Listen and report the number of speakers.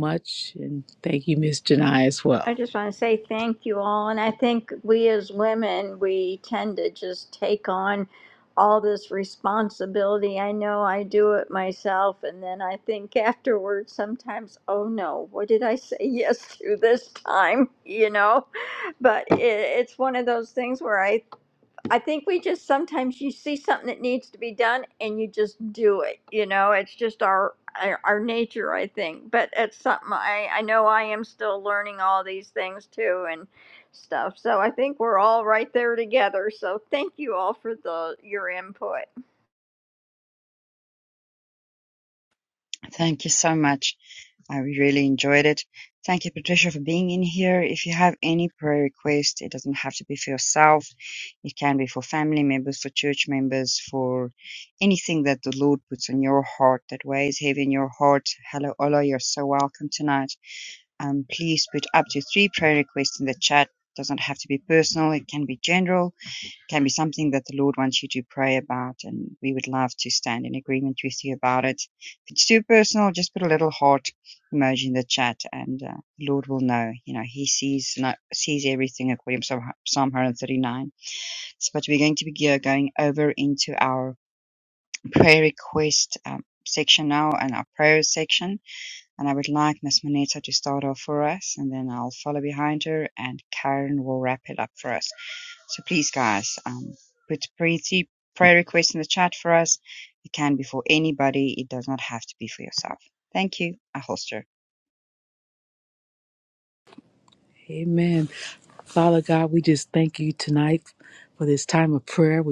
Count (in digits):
3